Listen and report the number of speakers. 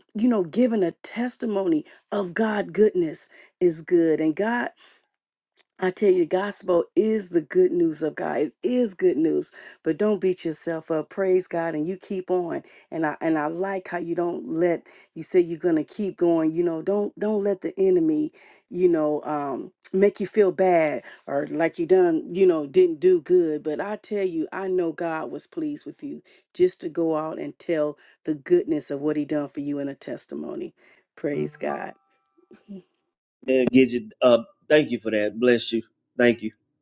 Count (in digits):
2